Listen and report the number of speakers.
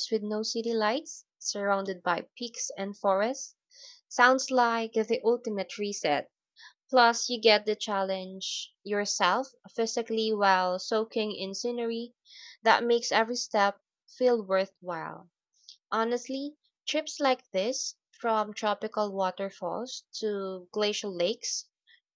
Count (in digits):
1